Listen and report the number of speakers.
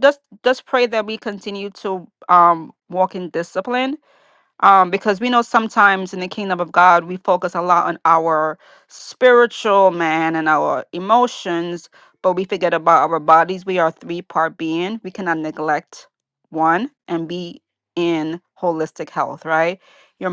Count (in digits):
1